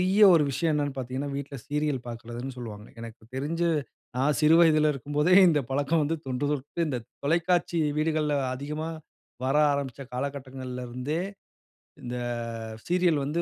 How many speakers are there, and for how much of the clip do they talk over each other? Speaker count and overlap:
1, no overlap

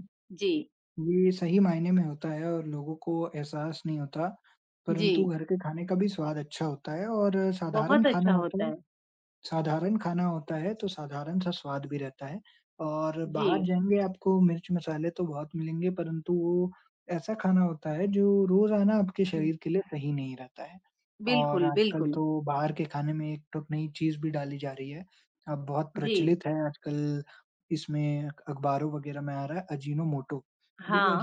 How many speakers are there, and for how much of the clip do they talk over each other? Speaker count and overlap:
2, about 11%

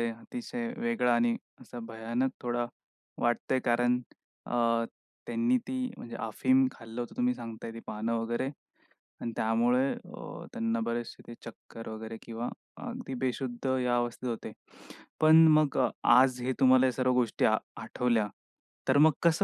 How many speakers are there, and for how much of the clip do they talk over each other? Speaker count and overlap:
1, no overlap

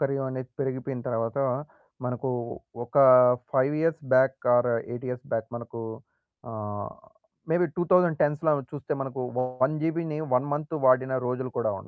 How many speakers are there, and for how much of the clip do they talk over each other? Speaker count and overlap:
1, no overlap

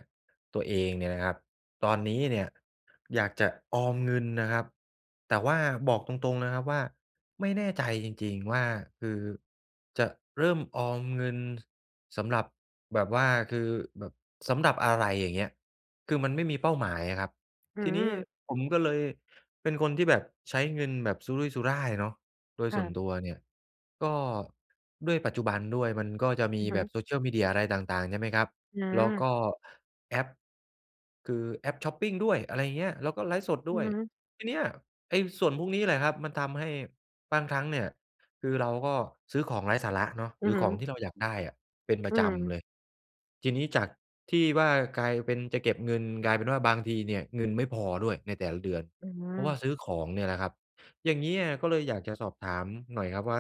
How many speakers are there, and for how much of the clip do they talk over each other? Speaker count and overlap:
2, about 4%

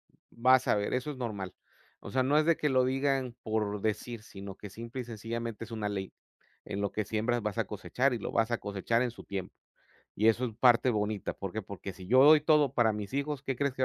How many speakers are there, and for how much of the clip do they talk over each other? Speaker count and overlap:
1, no overlap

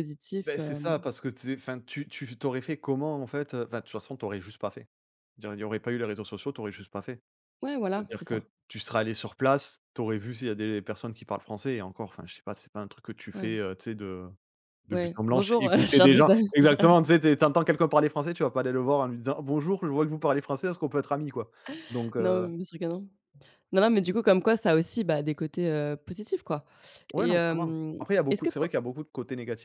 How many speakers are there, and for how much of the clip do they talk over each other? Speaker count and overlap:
2, about 14%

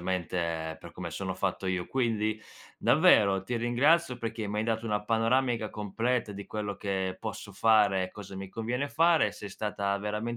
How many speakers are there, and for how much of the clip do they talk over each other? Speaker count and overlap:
1, no overlap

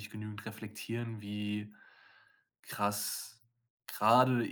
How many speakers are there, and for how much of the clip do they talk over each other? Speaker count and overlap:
1, no overlap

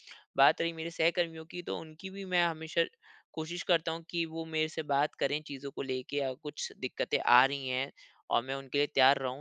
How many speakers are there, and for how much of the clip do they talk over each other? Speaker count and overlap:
1, no overlap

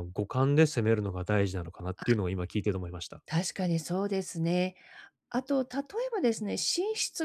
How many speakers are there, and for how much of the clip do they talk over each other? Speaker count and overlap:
2, about 2%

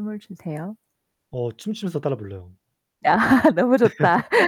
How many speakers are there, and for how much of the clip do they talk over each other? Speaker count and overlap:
2, about 2%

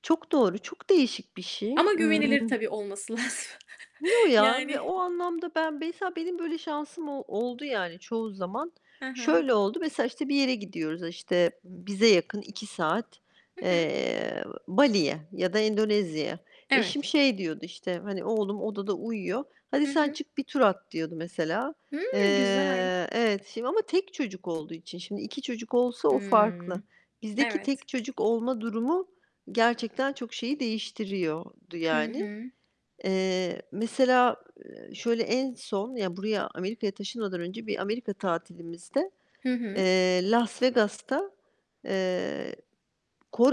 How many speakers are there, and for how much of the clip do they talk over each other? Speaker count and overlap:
2, about 11%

